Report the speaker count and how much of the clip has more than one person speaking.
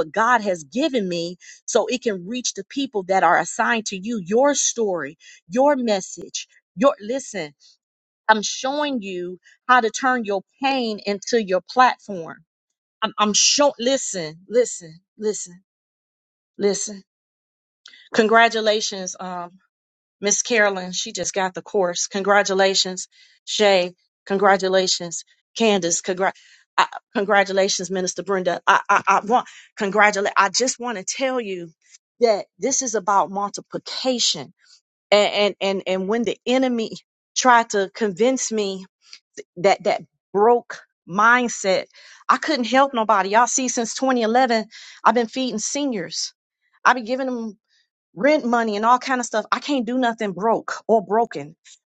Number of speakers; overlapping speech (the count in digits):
1, no overlap